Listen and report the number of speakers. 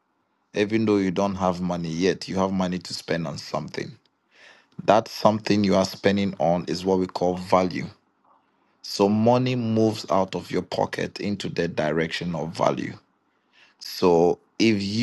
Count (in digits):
1